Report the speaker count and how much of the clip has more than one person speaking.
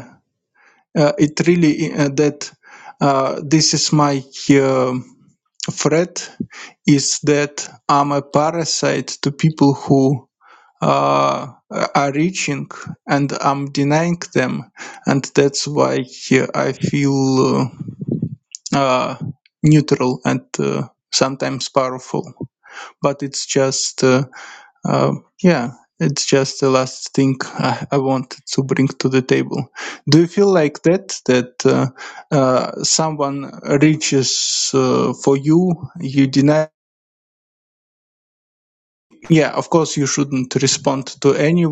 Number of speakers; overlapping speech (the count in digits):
1, no overlap